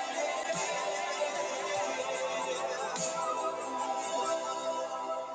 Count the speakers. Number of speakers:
0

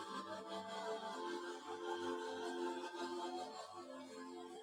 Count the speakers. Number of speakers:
0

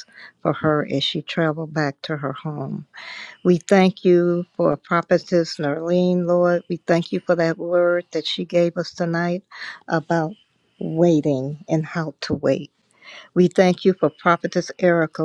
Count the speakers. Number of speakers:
1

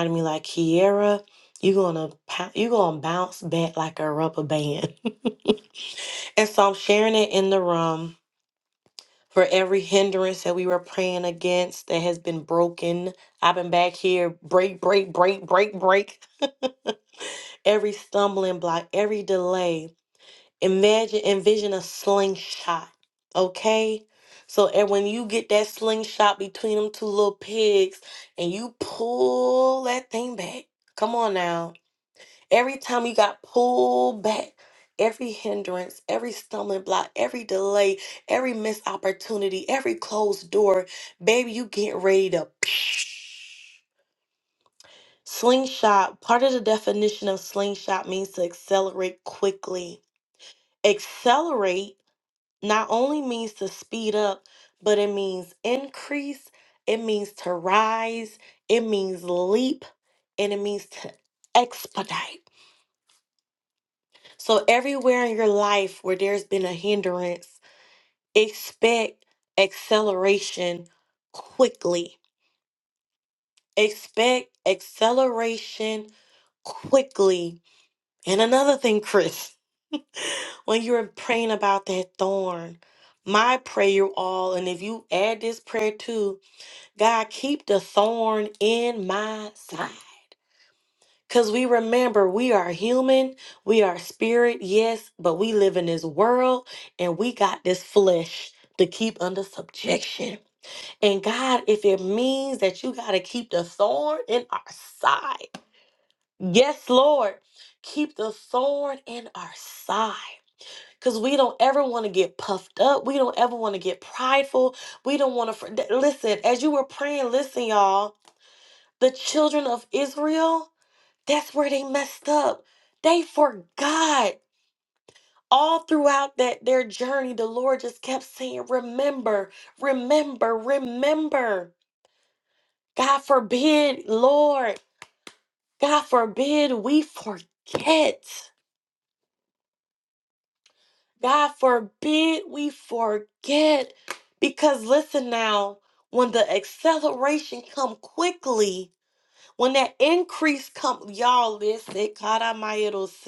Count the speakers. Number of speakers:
1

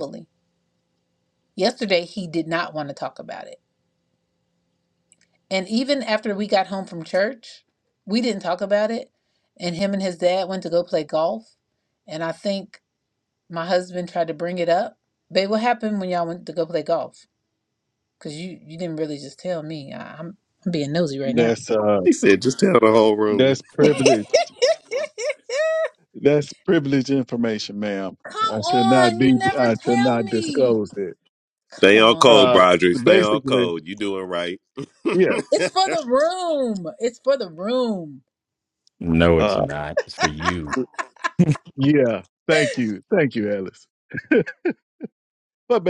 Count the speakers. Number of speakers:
4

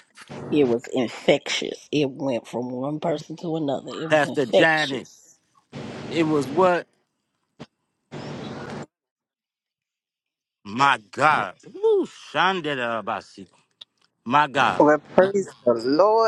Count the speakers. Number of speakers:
3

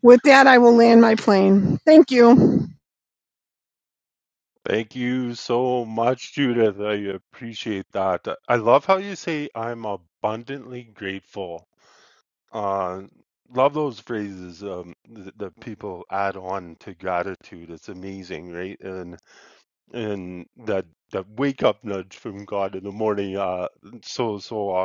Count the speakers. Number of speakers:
2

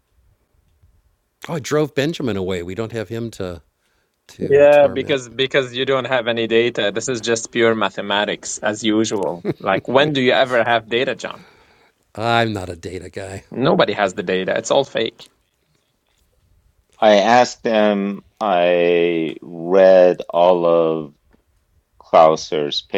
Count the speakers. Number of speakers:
3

